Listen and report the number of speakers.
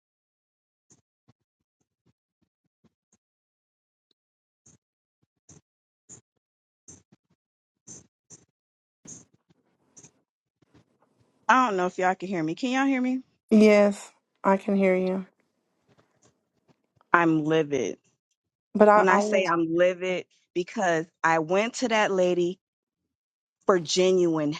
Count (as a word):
two